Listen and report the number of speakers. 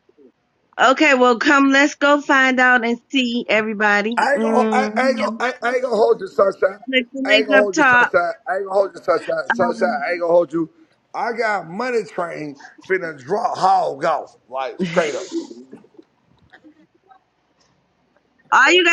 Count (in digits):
2